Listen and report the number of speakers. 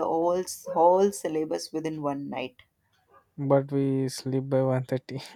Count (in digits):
2